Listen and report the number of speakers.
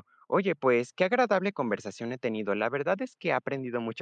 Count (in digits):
1